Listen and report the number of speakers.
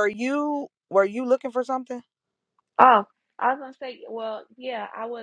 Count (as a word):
two